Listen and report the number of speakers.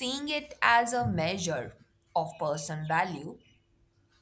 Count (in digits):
1